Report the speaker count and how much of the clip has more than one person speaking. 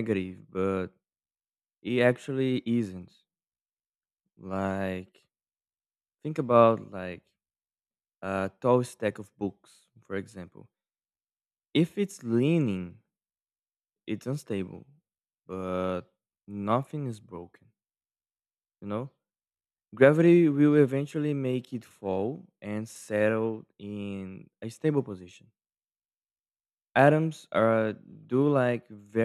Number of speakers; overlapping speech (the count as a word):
one, no overlap